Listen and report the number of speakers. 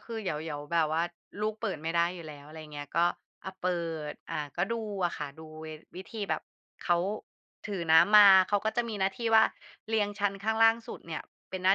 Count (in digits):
1